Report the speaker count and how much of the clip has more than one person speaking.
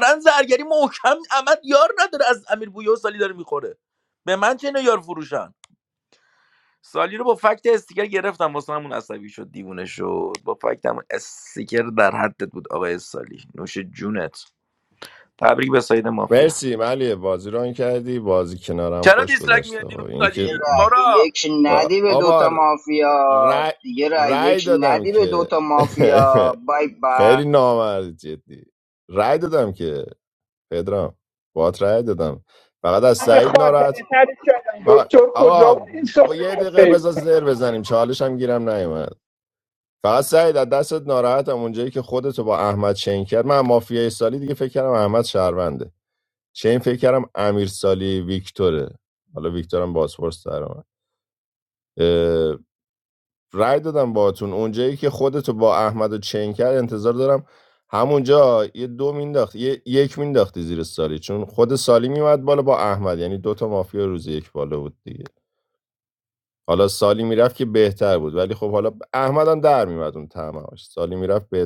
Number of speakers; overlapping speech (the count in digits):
4, about 11%